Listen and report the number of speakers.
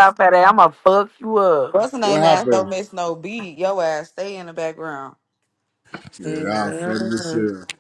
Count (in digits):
3